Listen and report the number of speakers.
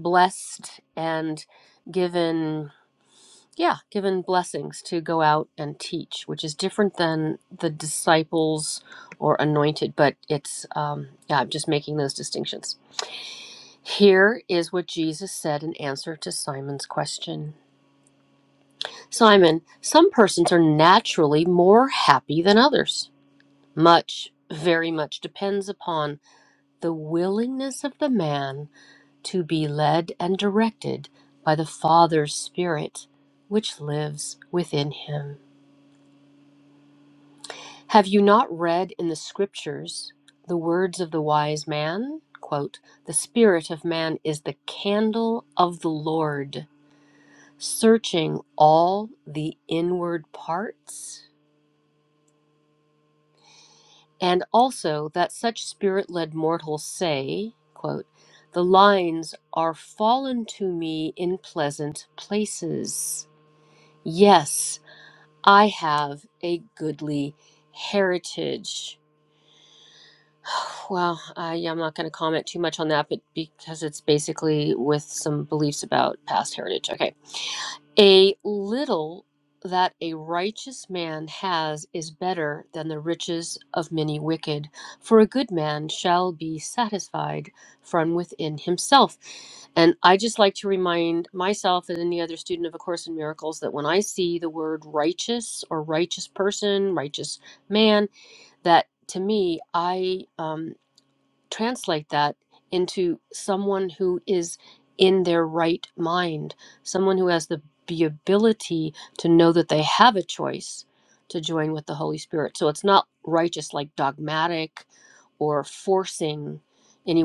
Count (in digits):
1